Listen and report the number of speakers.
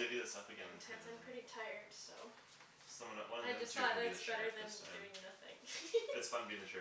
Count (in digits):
2